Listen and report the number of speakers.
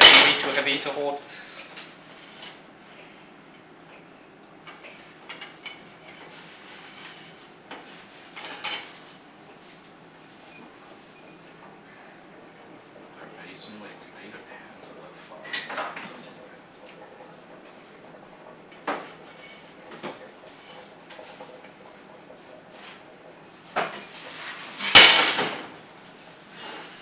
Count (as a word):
two